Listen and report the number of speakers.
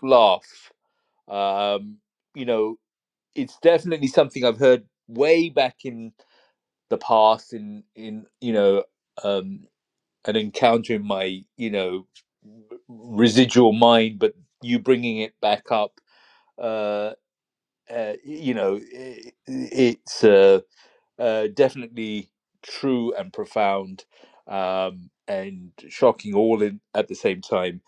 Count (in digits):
1